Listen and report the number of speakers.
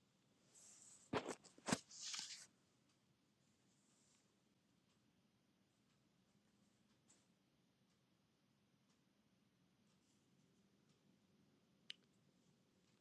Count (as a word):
zero